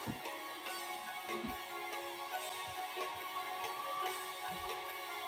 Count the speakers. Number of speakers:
zero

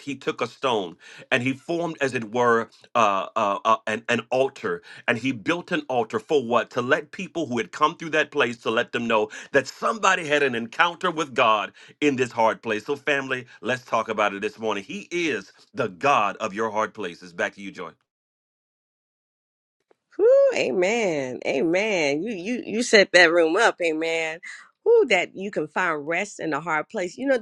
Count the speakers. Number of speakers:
two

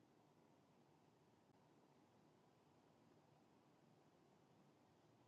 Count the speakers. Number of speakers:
zero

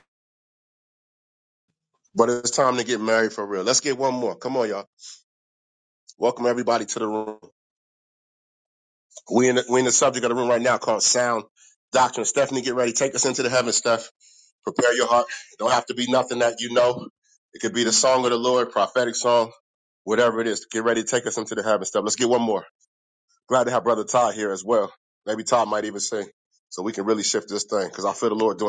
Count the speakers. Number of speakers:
one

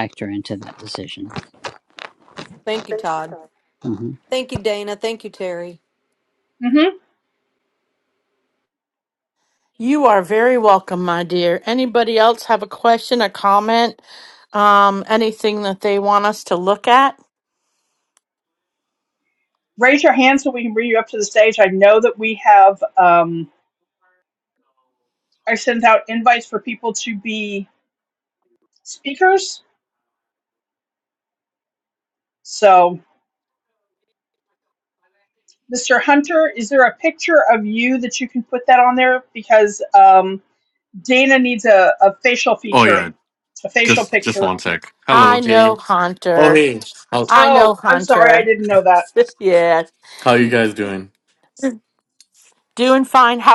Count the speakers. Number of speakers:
five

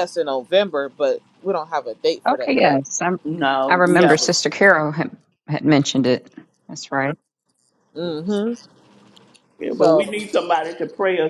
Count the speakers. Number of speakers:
three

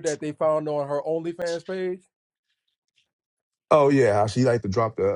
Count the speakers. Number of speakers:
two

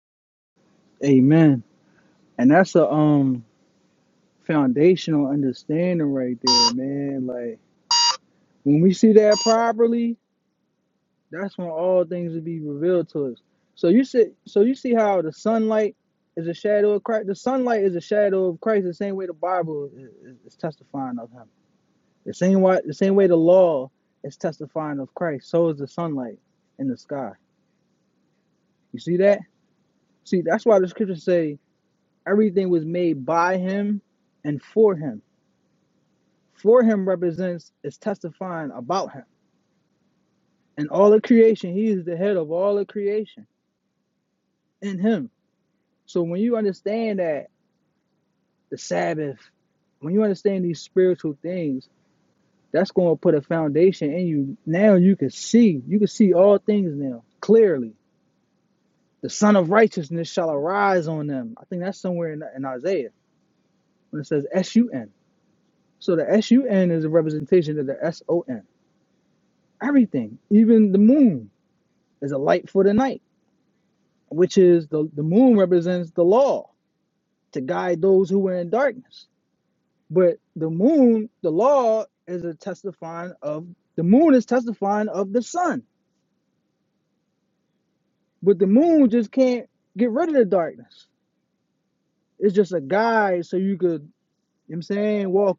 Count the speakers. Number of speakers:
one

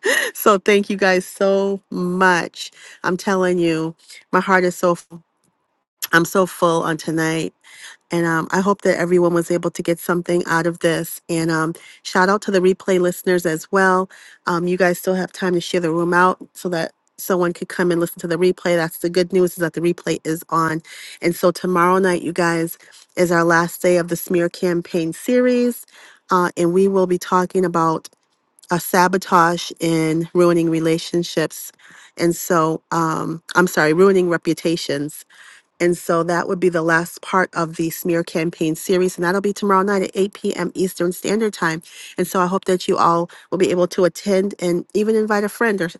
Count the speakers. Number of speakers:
one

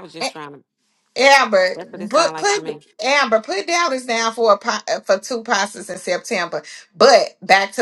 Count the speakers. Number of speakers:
two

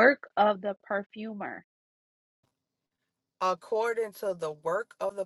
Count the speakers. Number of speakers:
two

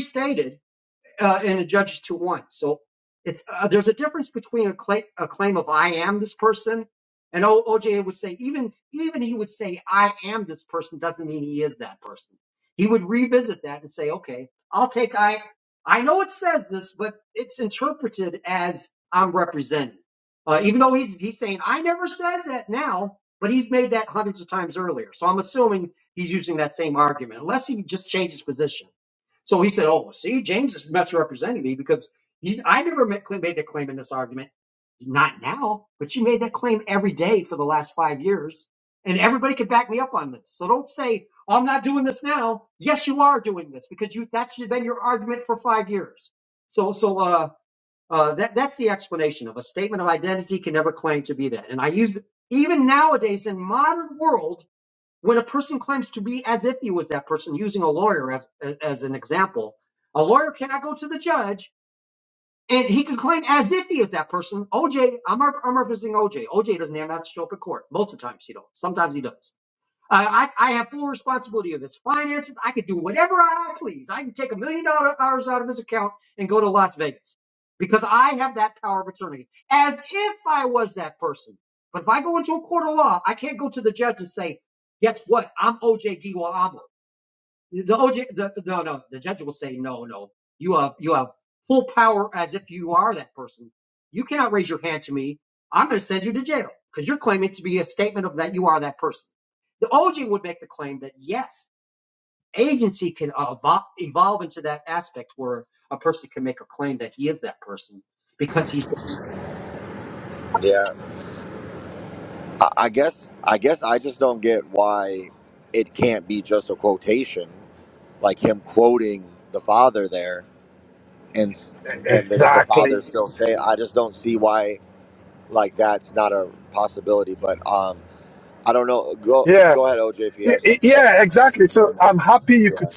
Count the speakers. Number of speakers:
three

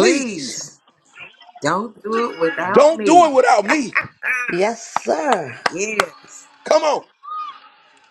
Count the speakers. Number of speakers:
three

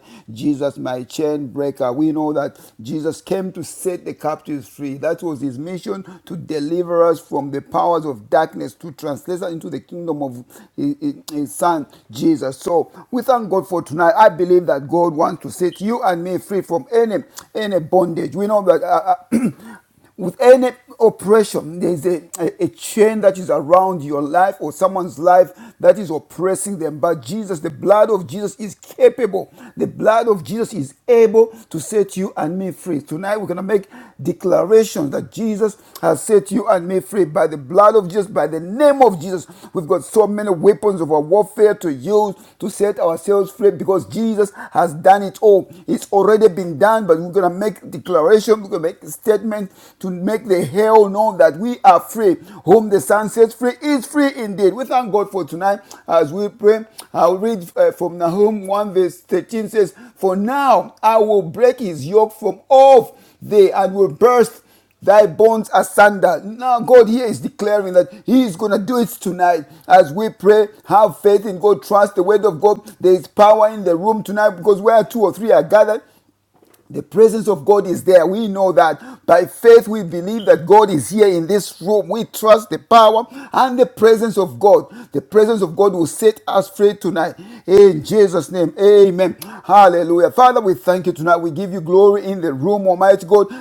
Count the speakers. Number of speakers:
one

